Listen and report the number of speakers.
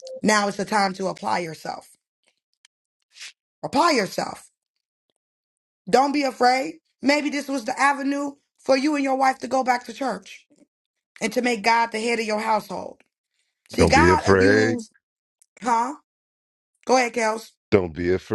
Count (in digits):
2